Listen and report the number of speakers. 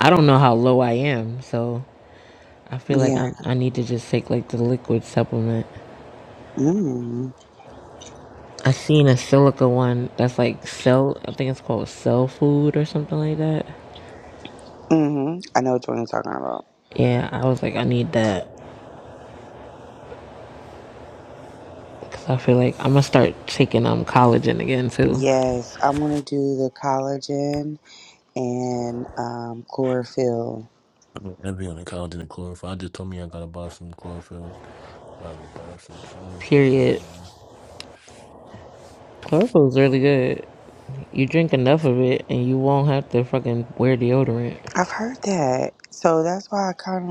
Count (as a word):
three